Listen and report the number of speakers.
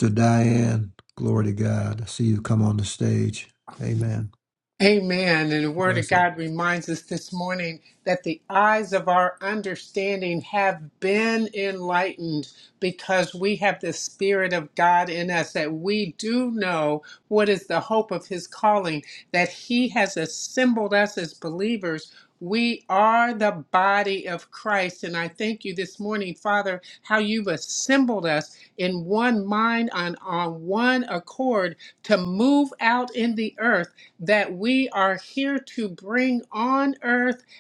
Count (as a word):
two